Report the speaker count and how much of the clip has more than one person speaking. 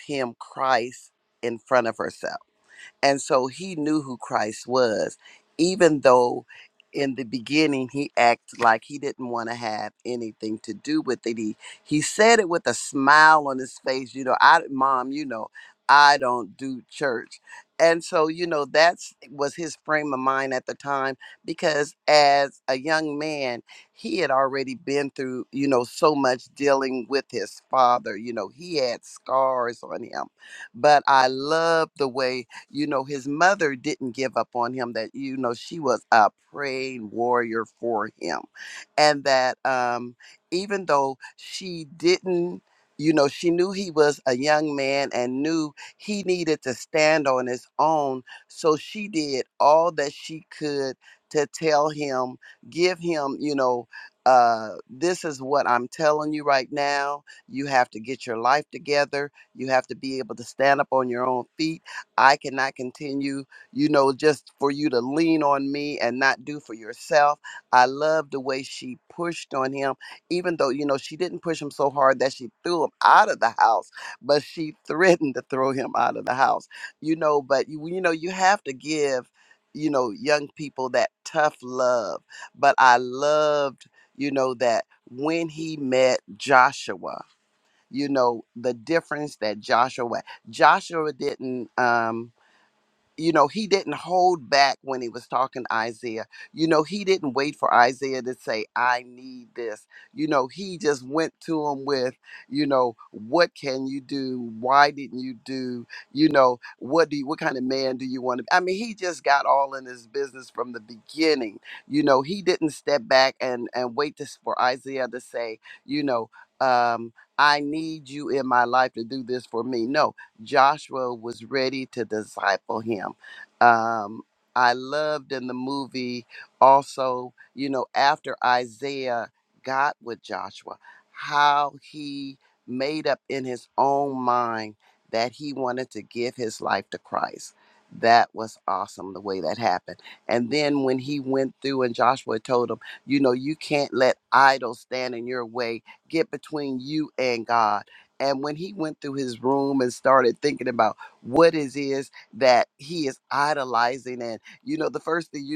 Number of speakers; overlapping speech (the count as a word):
one, no overlap